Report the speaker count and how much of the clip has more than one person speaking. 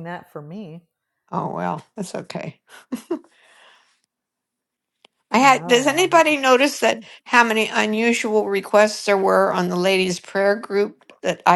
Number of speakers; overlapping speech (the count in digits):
2, about 8%